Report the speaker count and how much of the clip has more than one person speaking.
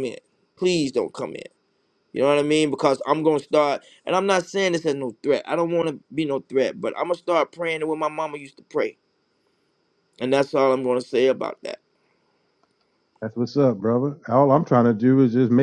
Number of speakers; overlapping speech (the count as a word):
two, no overlap